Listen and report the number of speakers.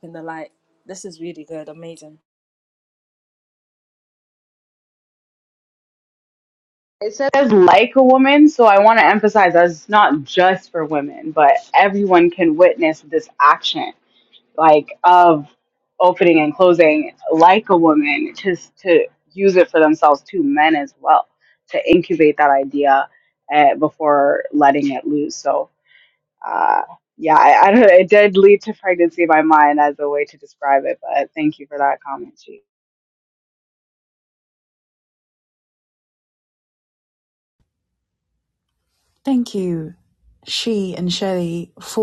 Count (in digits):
3